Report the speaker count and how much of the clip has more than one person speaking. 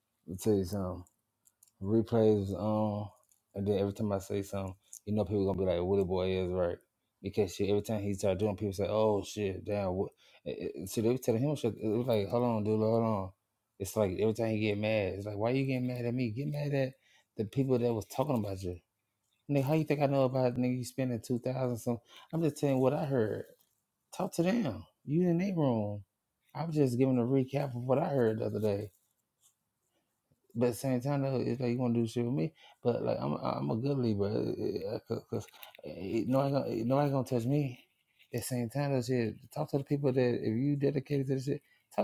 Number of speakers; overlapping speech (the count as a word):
one, no overlap